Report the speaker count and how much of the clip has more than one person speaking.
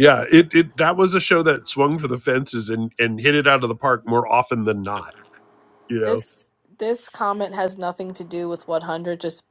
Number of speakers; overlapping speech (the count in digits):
2, about 1%